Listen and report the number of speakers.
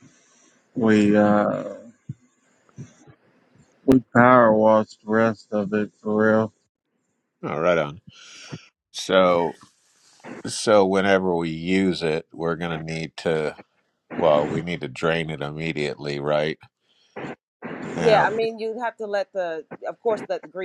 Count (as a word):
three